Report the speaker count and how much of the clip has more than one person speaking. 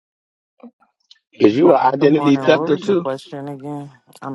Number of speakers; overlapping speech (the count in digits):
2, about 23%